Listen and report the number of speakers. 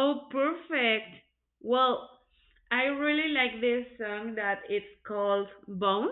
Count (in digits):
1